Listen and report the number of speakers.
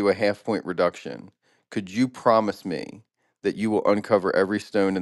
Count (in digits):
1